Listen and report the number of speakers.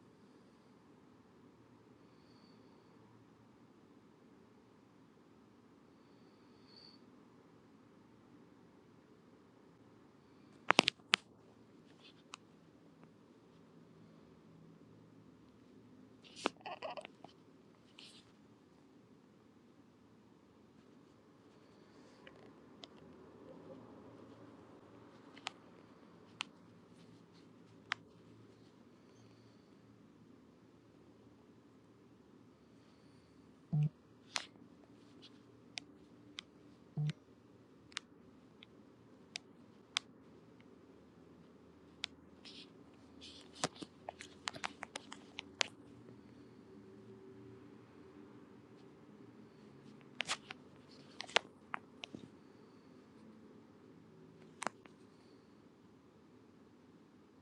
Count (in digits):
0